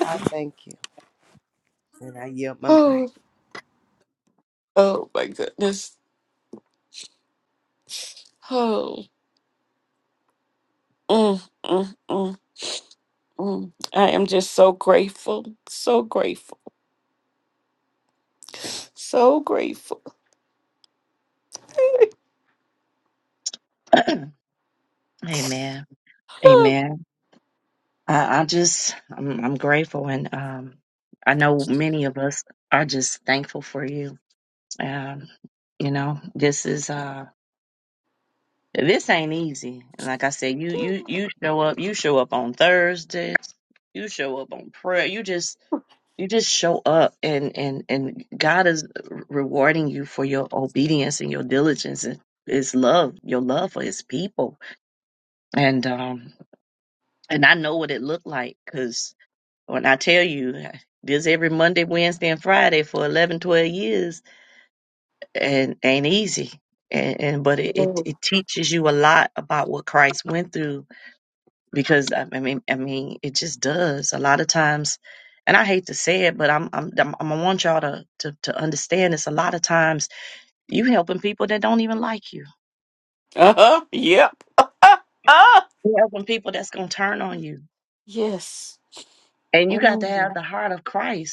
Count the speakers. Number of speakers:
3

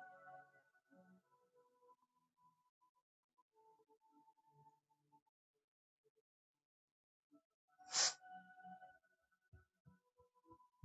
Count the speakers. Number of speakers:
0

